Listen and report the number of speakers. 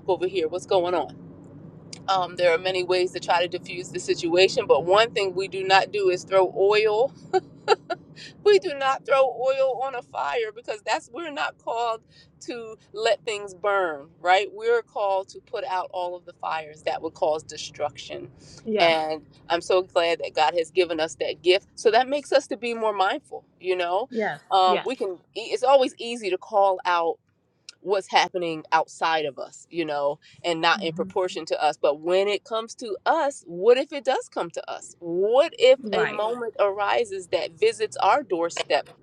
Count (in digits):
2